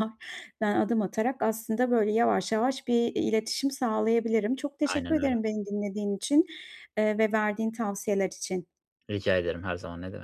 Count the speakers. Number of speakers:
2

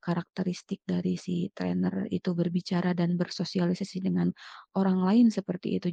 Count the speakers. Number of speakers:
1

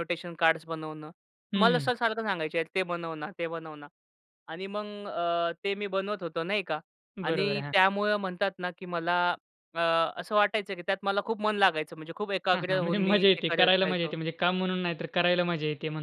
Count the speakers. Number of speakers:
2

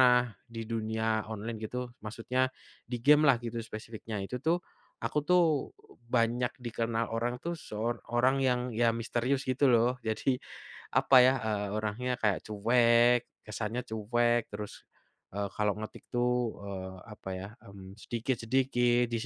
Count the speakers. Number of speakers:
1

